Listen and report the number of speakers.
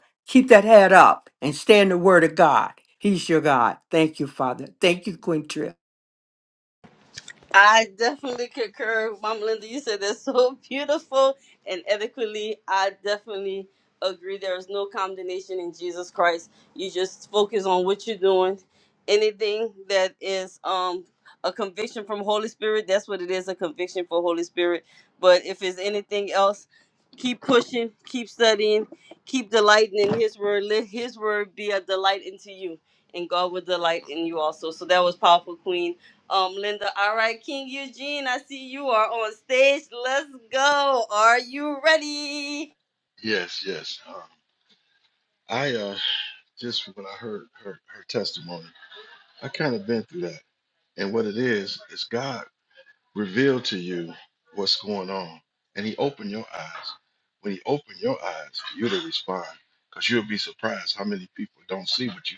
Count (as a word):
three